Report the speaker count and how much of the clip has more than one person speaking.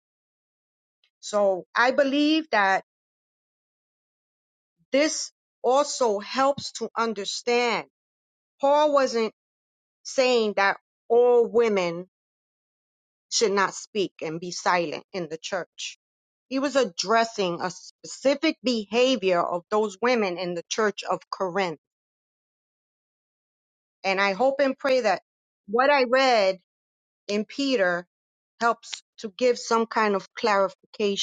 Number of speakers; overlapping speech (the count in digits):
1, no overlap